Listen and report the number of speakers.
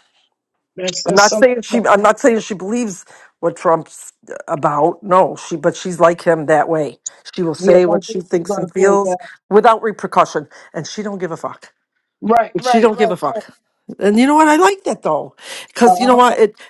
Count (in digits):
2